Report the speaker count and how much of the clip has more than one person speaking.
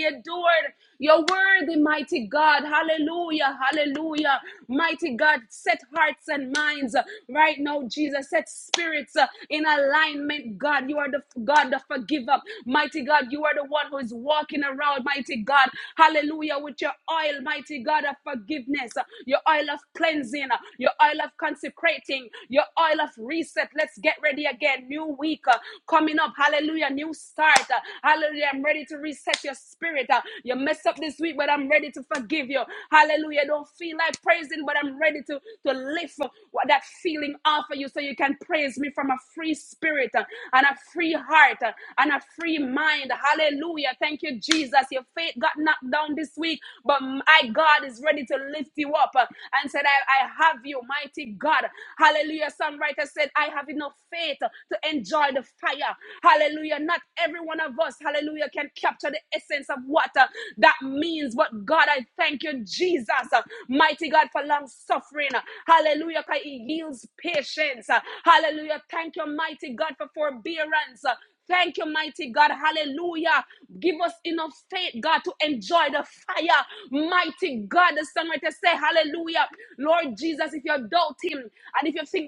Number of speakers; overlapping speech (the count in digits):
1, no overlap